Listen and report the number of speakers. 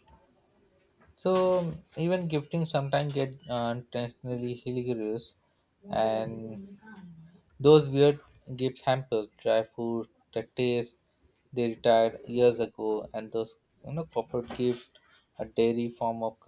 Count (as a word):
one